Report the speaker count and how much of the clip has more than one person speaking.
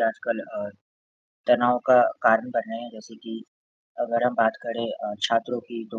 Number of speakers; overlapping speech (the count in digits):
1, no overlap